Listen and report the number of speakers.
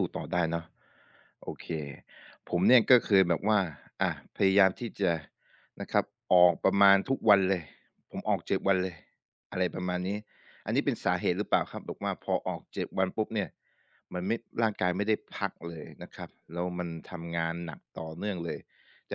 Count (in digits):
1